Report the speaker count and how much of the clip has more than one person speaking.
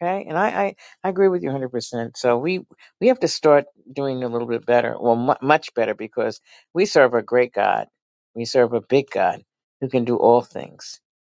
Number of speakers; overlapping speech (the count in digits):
1, no overlap